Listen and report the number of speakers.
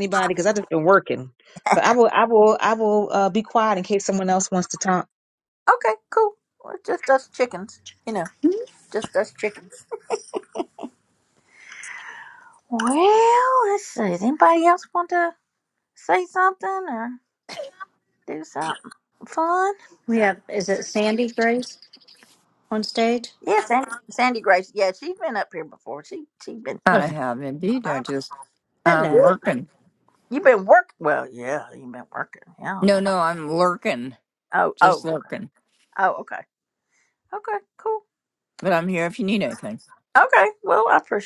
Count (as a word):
four